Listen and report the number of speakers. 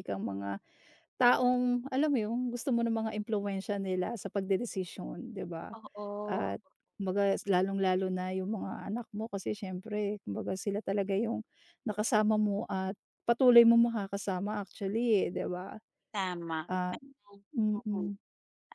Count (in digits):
2